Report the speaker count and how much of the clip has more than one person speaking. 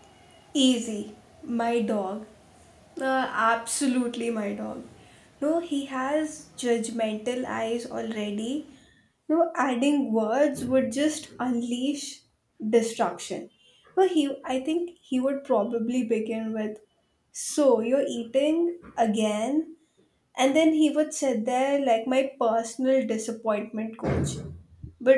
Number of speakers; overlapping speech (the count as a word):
one, no overlap